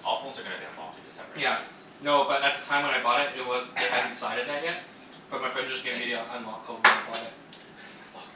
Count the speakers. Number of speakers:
2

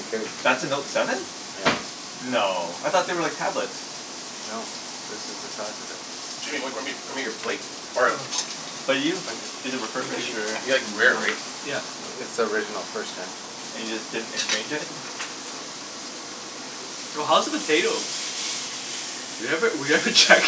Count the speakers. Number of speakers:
4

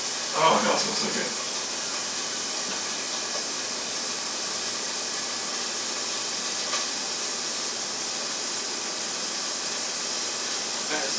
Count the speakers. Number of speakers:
1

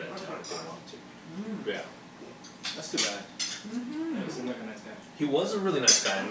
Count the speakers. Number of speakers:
3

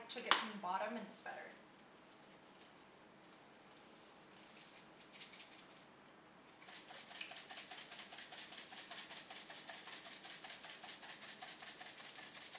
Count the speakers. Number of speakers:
1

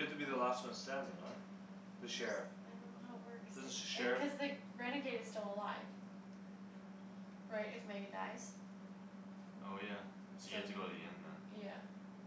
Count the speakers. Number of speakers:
3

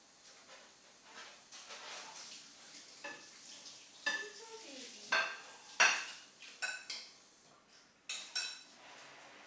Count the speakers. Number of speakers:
1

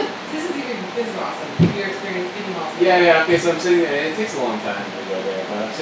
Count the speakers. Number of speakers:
2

